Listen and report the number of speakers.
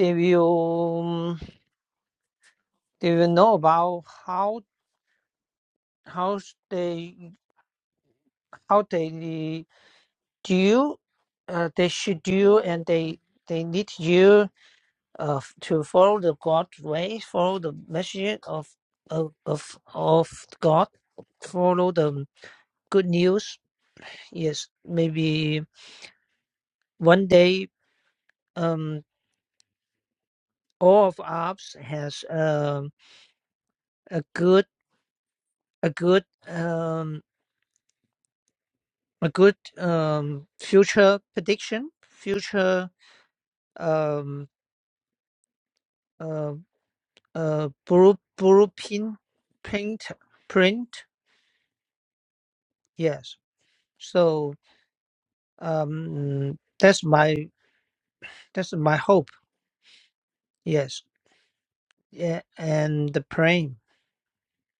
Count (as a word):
one